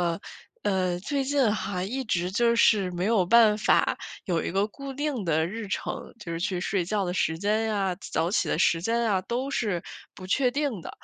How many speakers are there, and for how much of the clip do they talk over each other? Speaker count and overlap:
1, no overlap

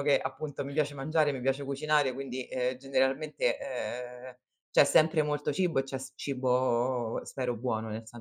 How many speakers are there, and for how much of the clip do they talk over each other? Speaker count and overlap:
1, no overlap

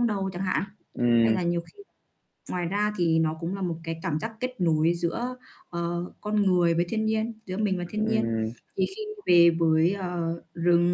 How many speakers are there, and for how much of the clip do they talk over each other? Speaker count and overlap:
2, about 5%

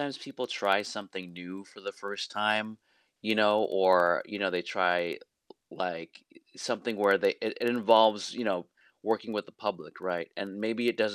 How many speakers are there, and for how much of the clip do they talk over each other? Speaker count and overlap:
1, no overlap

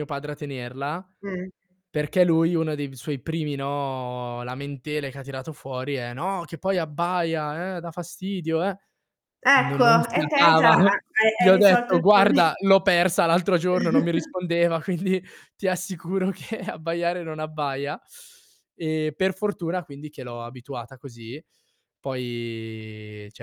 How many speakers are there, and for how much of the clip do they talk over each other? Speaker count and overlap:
2, about 10%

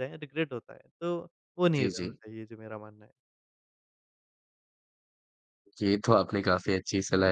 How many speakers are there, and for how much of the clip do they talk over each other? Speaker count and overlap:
2, about 5%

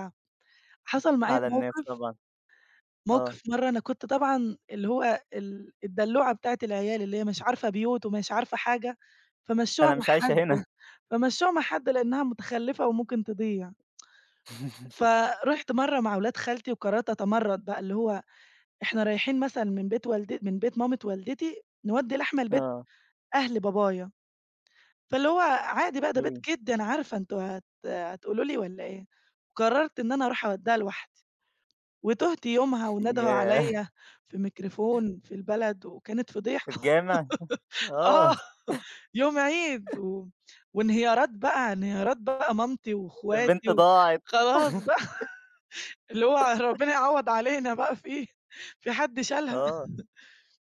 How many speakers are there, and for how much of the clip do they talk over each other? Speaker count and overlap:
2, about 7%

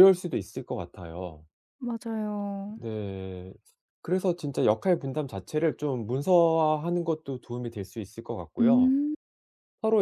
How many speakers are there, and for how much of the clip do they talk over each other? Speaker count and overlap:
2, about 3%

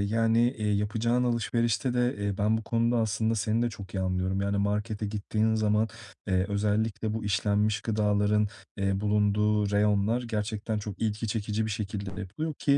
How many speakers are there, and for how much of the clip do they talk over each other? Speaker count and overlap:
1, no overlap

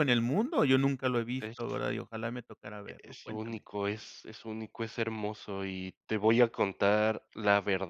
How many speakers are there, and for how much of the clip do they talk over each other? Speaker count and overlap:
2, about 10%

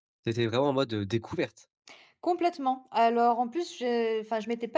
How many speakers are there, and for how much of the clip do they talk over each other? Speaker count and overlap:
2, no overlap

